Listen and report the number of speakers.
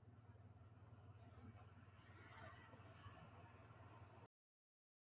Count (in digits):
0